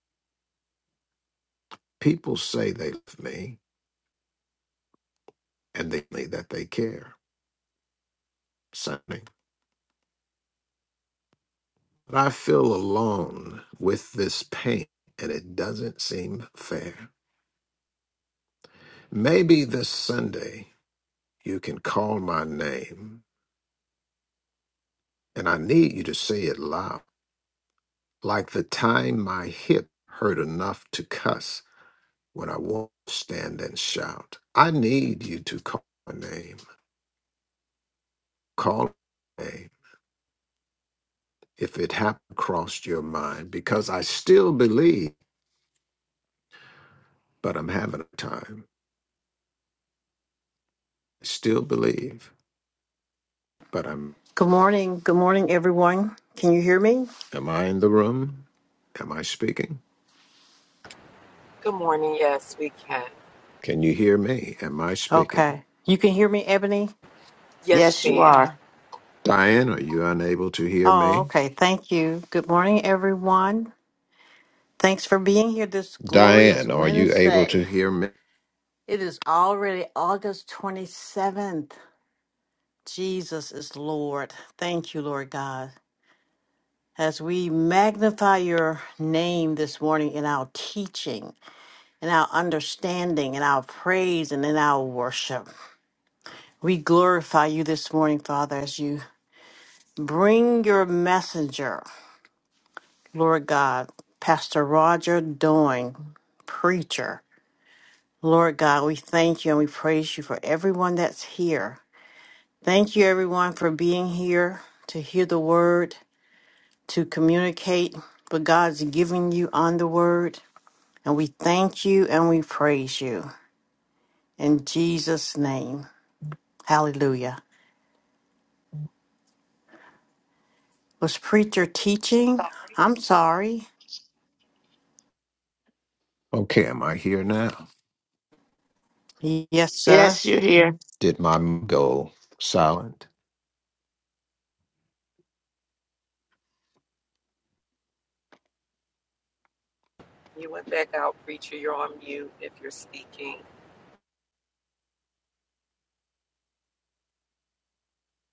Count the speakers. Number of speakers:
four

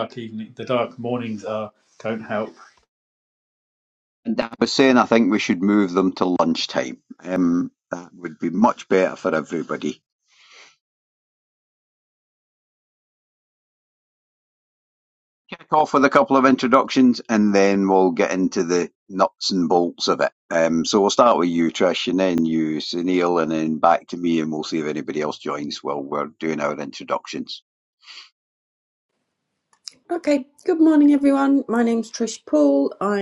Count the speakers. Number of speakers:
three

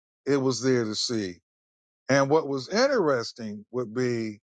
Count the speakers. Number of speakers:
one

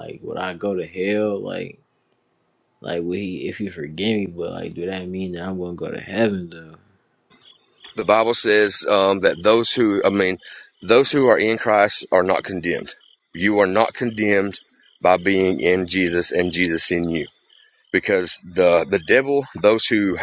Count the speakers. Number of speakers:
two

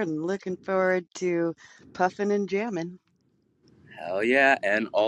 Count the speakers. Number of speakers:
two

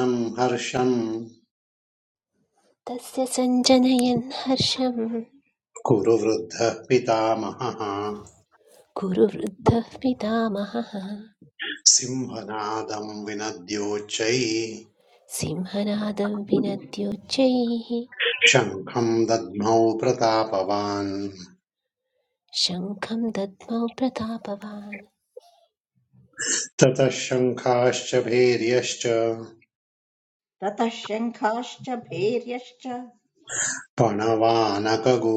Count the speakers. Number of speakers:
three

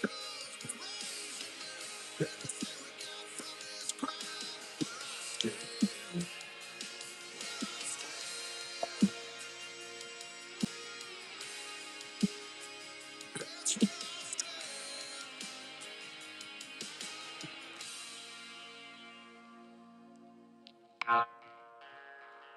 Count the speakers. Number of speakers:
zero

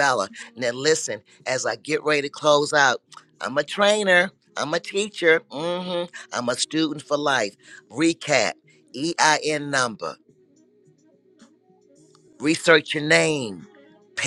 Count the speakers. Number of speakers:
one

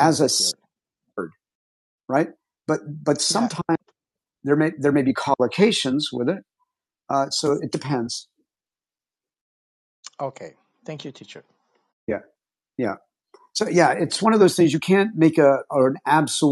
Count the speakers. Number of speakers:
two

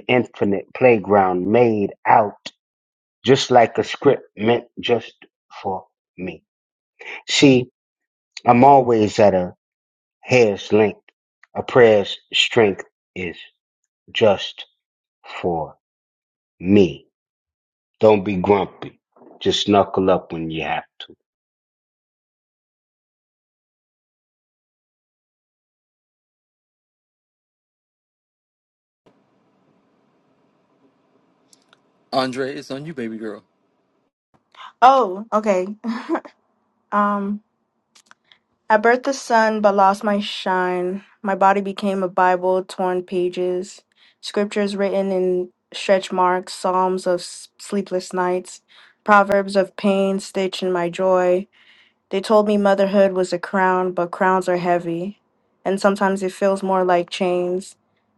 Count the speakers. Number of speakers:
three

